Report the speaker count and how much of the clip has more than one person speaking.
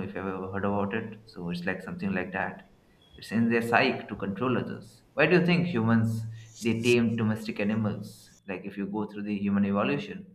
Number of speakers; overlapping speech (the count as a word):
one, no overlap